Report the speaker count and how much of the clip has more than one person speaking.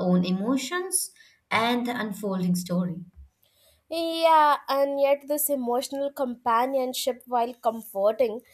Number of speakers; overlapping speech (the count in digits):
2, no overlap